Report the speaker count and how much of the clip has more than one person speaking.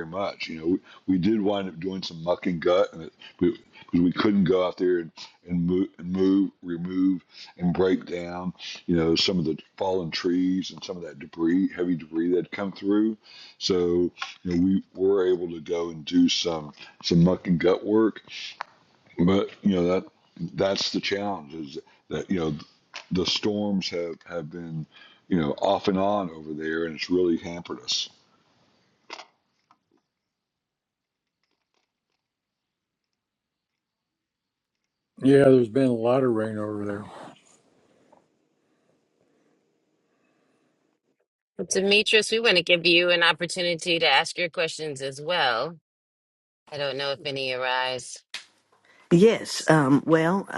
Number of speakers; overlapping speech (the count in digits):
4, no overlap